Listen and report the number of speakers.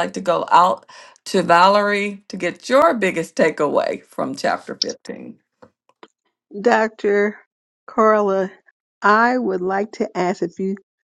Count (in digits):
2